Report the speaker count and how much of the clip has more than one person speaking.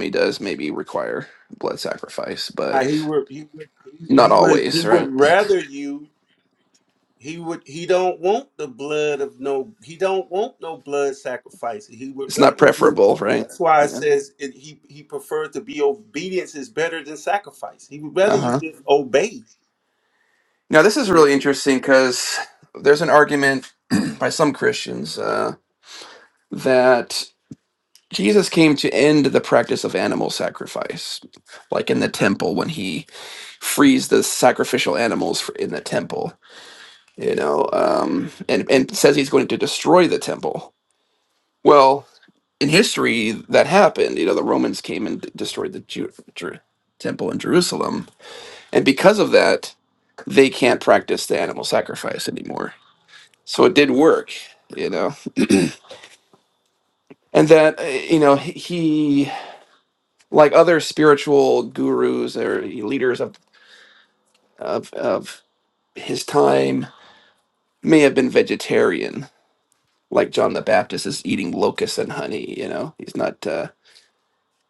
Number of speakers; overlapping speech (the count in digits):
2, about 4%